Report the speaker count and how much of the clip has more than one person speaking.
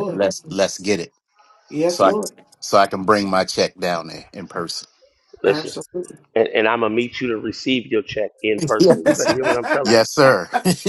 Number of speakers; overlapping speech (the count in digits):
3, about 17%